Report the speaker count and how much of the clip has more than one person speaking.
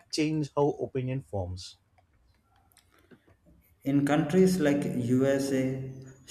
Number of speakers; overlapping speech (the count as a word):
two, no overlap